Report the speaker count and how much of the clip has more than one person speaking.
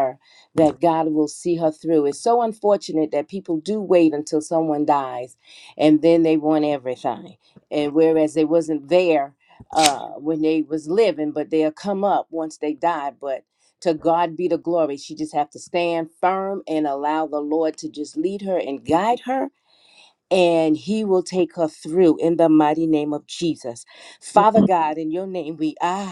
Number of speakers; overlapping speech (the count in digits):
1, no overlap